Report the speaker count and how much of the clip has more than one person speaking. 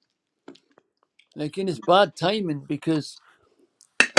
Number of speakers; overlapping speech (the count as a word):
one, no overlap